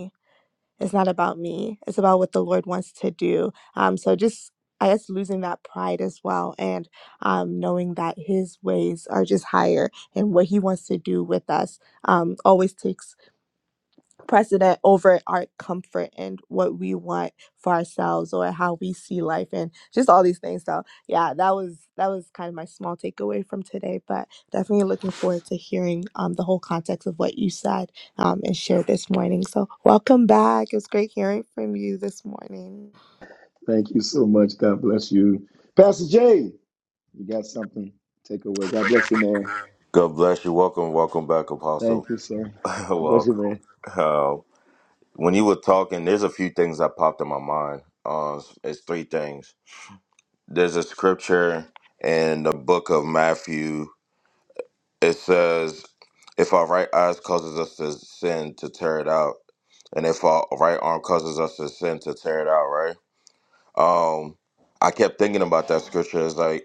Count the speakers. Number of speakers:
three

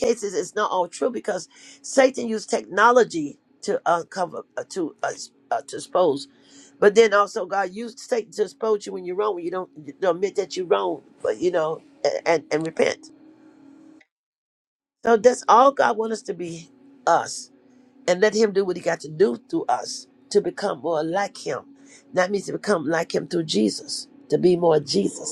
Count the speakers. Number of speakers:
one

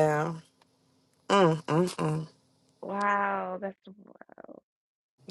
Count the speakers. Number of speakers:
two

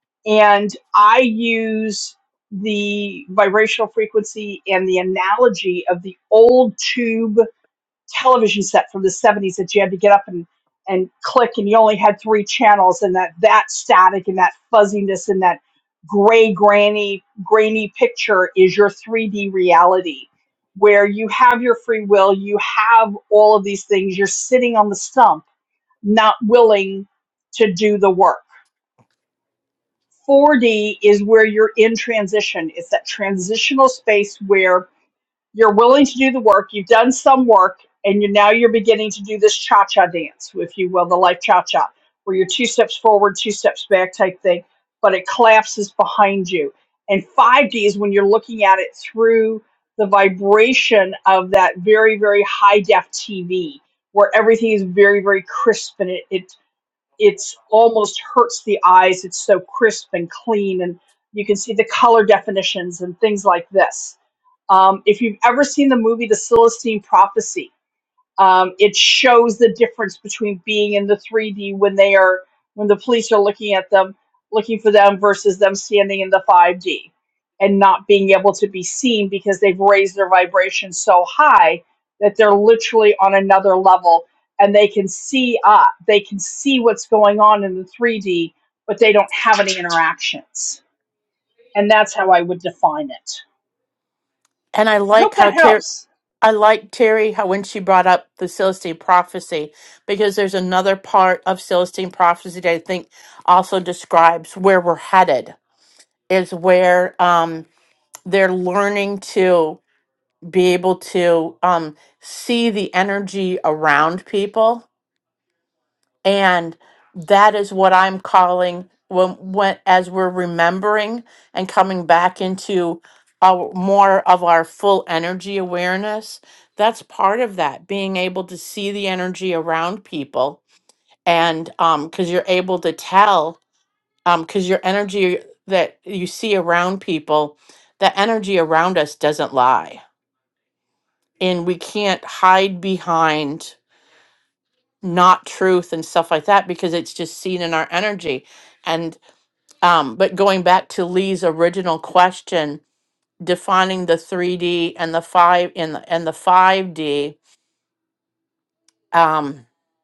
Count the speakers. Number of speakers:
two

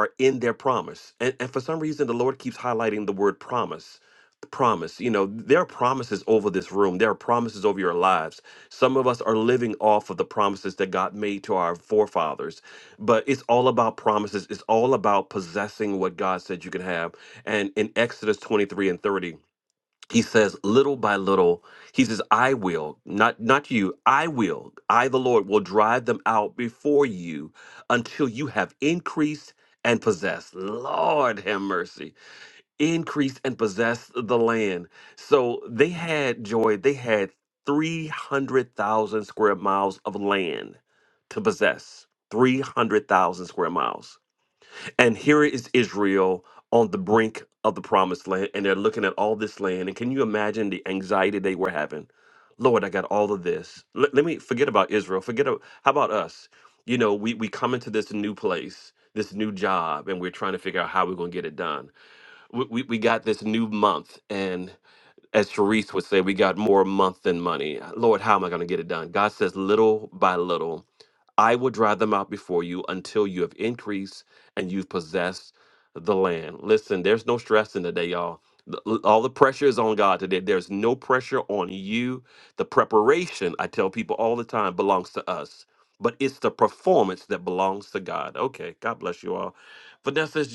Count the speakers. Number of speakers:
one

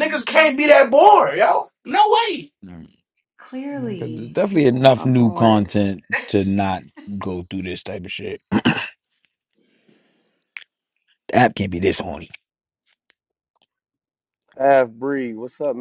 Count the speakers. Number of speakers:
four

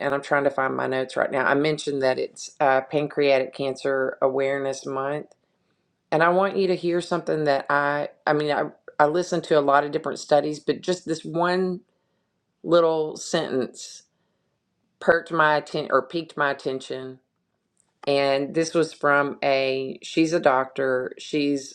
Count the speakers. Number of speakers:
one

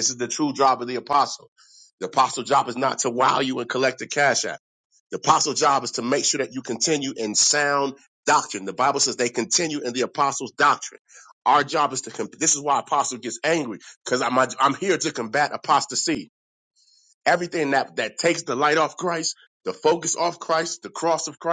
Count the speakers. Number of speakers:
one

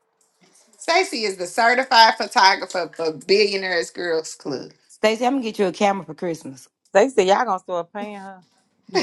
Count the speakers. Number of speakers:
three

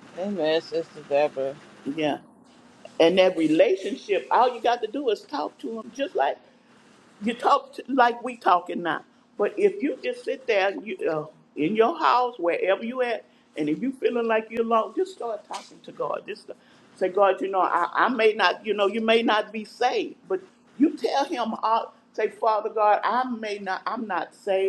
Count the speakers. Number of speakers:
two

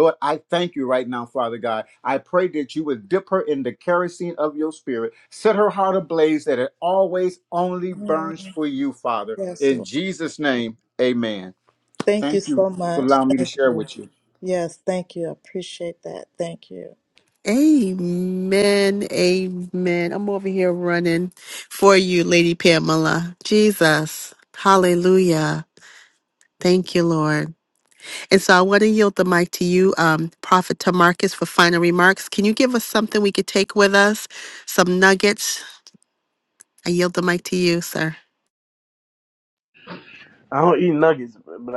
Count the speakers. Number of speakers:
four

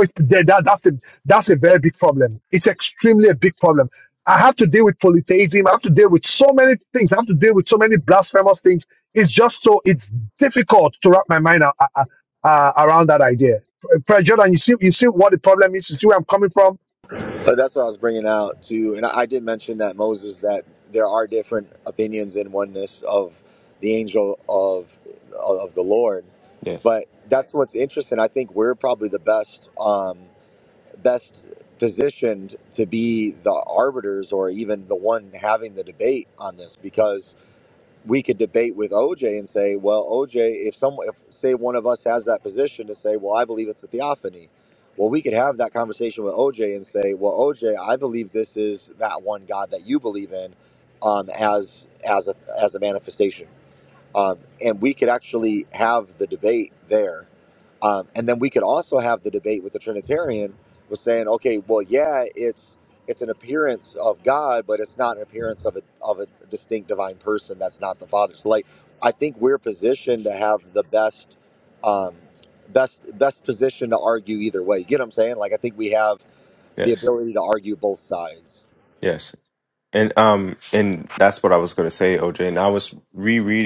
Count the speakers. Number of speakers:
three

